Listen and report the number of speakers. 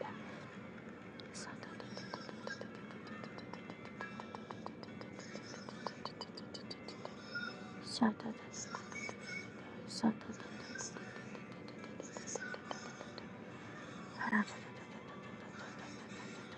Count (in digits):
0